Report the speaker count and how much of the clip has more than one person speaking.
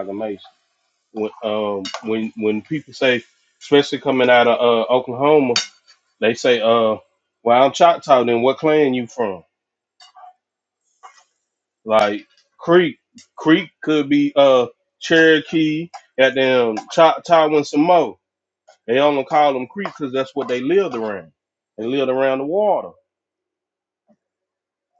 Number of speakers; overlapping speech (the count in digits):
1, no overlap